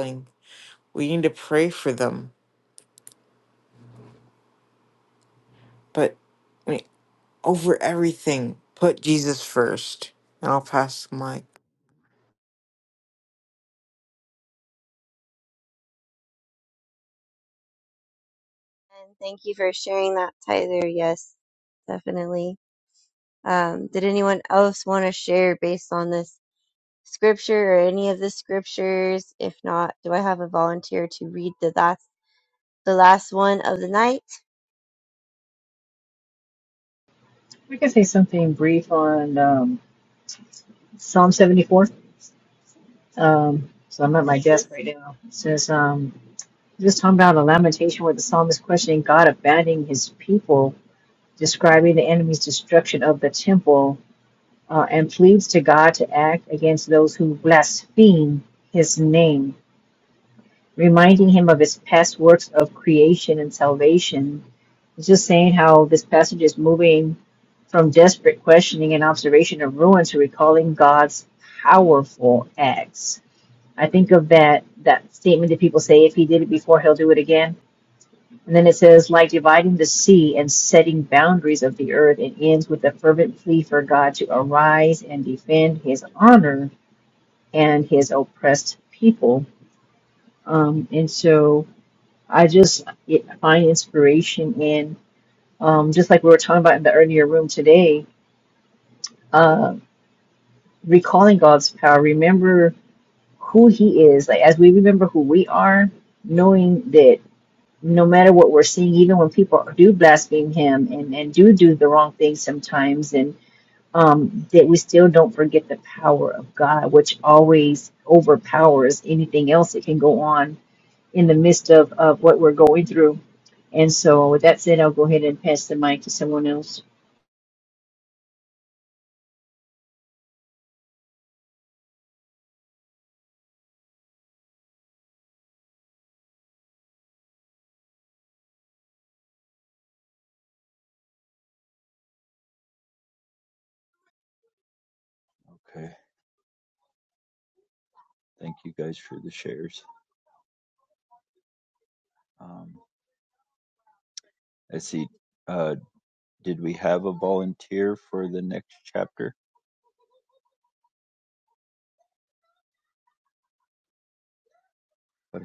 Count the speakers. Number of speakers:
4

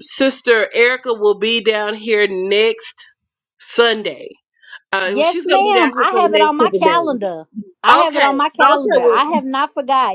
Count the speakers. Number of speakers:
2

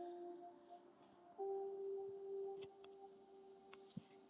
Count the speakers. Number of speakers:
0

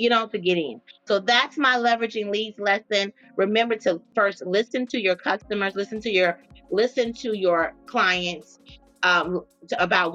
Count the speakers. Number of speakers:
1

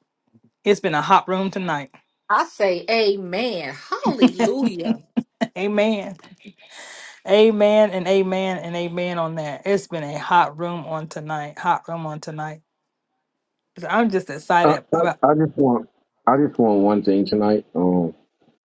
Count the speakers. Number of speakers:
3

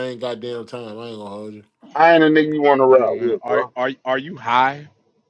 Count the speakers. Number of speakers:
3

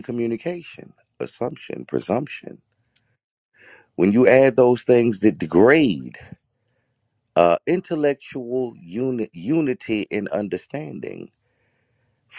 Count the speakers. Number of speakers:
1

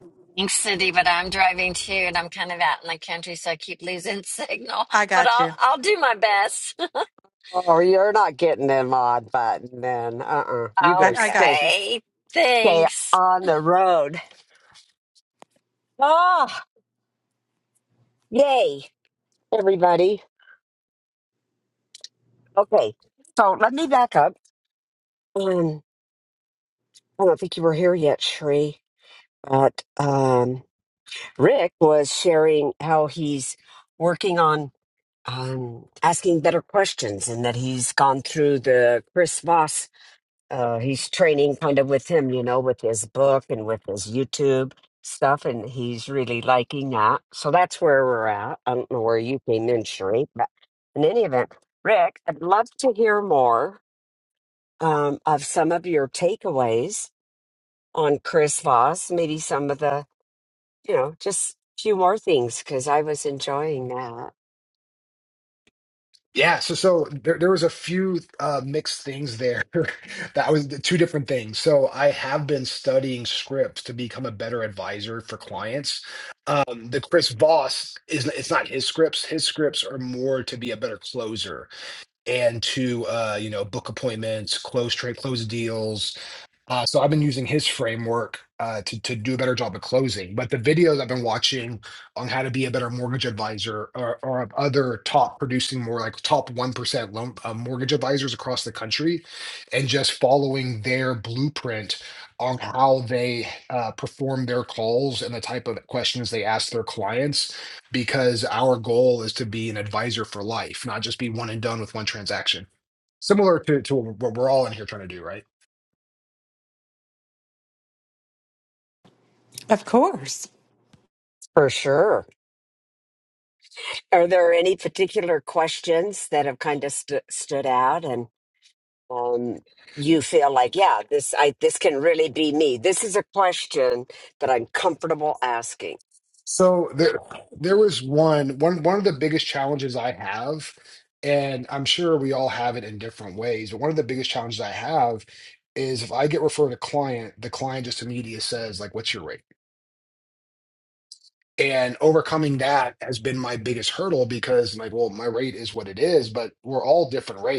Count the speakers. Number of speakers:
4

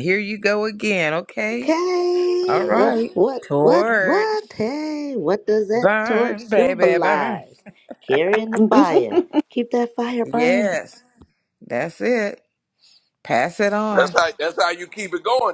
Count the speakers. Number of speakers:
3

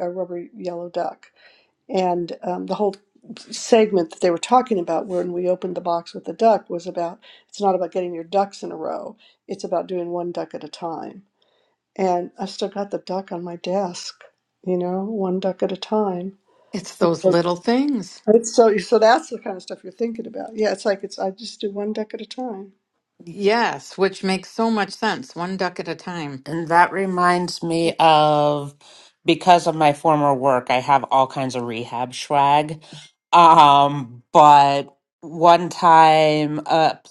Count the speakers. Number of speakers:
3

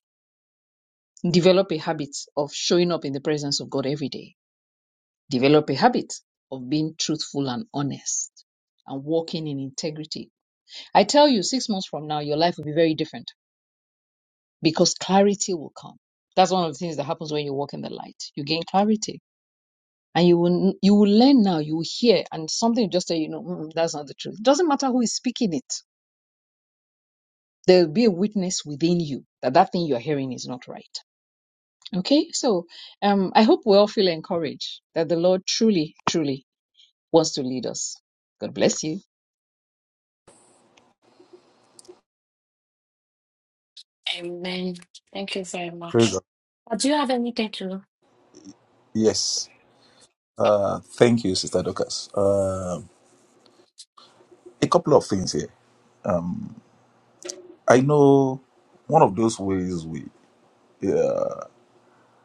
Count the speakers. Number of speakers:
3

